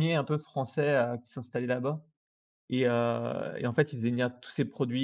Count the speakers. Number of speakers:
1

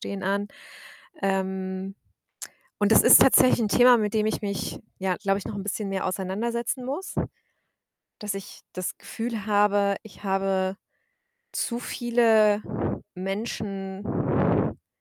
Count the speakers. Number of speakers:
1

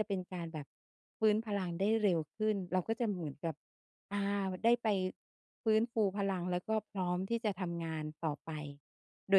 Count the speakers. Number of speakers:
1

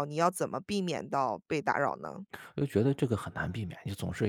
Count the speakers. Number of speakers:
2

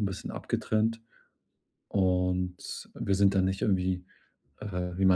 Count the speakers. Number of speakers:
1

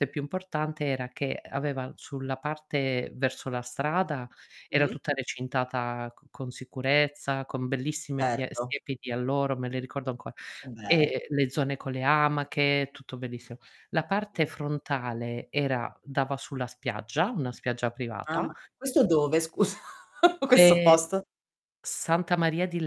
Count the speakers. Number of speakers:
2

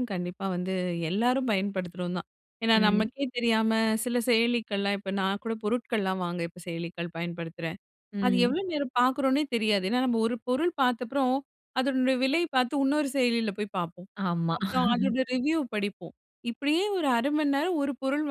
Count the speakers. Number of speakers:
2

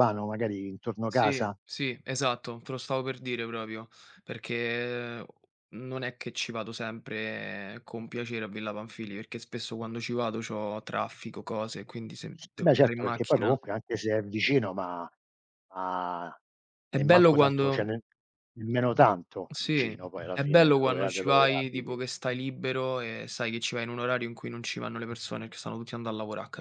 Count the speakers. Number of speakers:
2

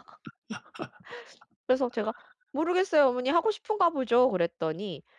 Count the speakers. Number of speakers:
1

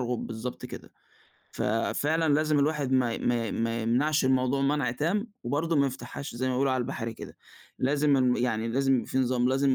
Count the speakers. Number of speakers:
1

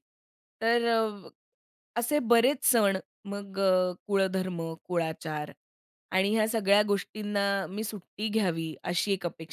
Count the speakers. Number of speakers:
1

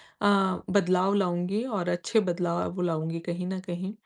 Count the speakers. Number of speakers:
1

